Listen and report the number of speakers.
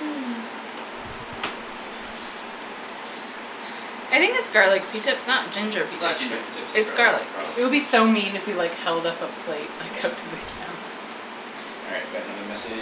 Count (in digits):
3